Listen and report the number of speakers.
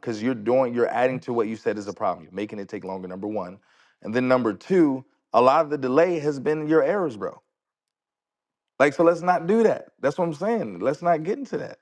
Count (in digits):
1